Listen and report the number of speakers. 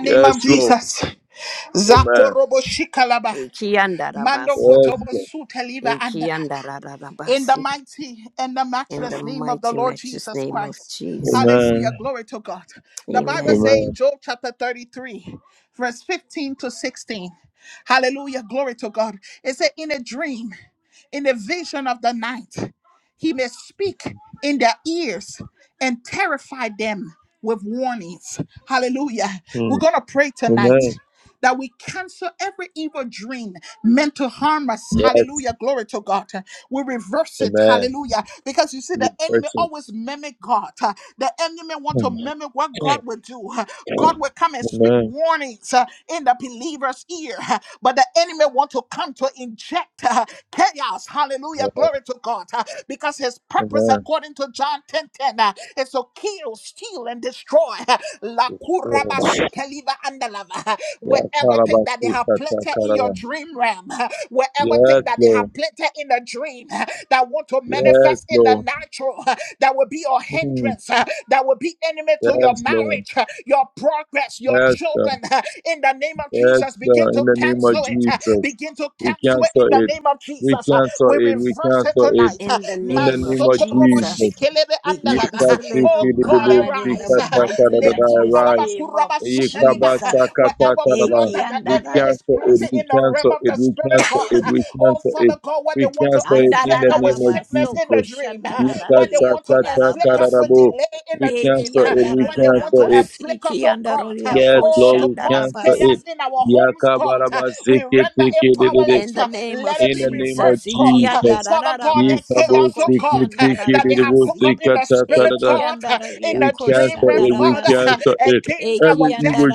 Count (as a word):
three